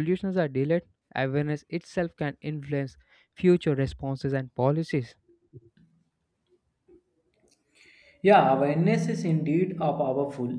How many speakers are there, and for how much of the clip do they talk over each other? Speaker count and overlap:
2, no overlap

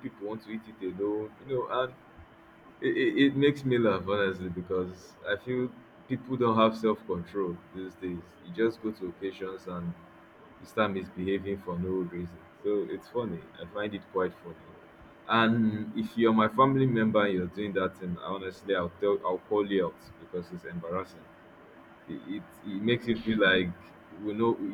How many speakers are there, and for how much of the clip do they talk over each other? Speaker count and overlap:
1, no overlap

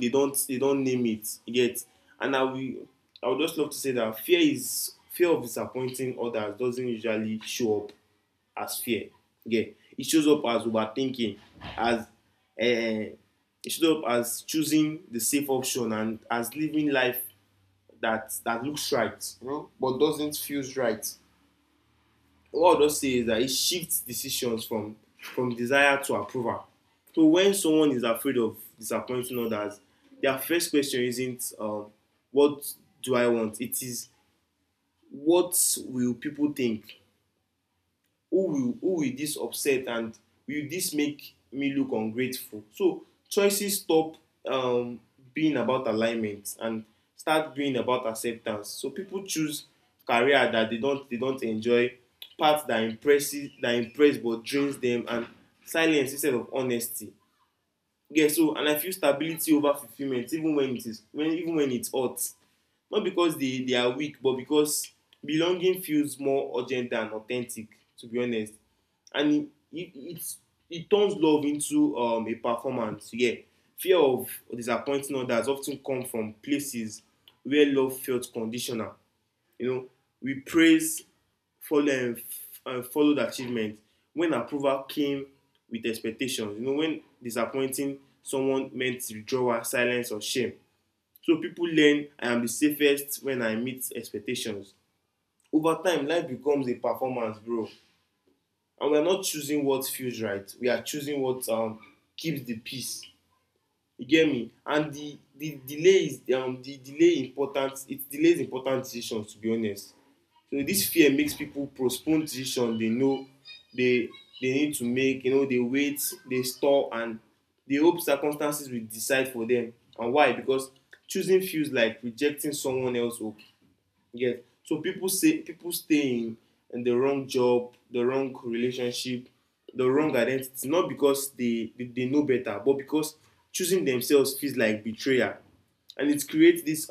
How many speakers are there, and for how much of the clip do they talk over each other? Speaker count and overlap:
1, no overlap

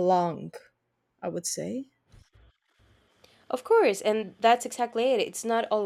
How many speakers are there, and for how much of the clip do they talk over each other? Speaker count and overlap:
2, no overlap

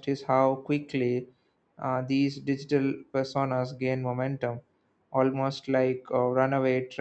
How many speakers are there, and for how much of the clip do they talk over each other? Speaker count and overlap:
1, no overlap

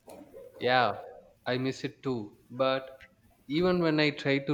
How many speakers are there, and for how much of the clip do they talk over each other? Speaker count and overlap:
1, no overlap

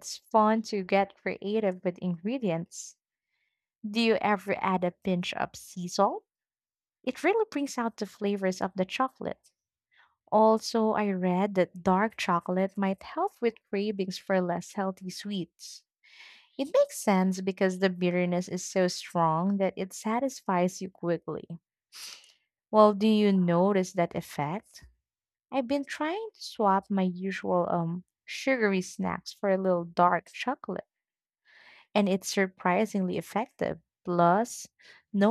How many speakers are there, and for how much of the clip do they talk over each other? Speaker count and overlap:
1, no overlap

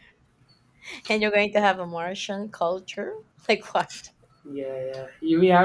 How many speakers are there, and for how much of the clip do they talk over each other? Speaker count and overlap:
2, no overlap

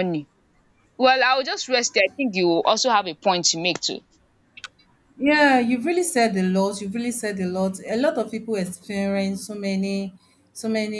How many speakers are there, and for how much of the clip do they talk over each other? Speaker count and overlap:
2, no overlap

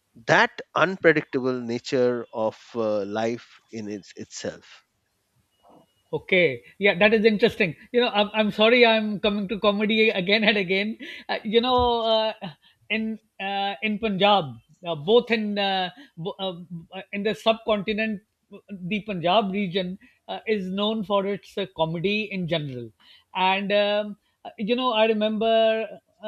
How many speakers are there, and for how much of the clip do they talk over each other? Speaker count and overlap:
2, no overlap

